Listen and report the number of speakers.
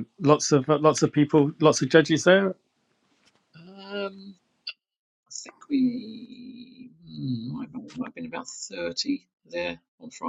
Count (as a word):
two